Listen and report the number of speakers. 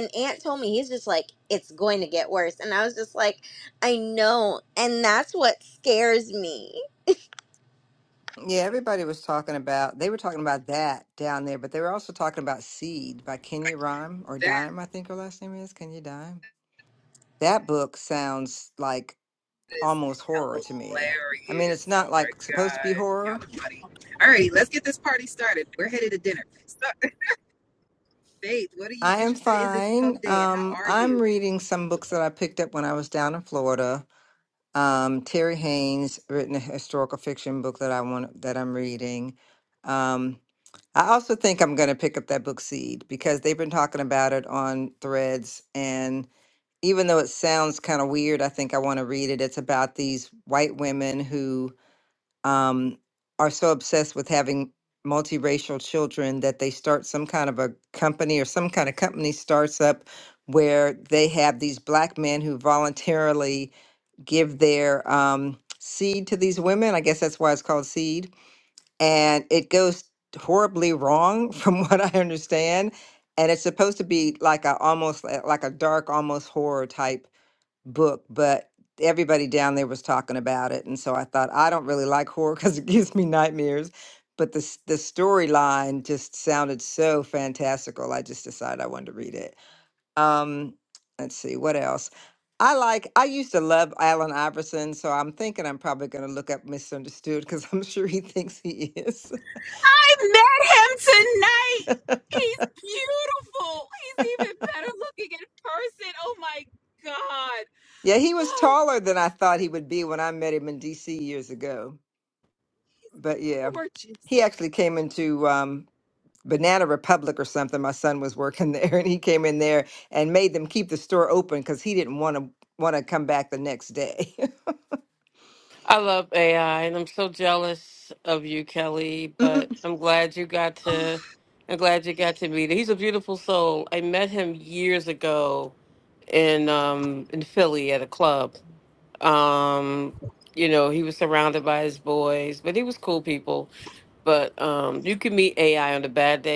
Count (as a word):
four